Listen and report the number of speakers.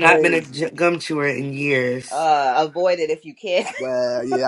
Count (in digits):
3